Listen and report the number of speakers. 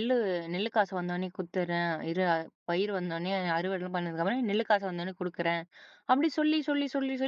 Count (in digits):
1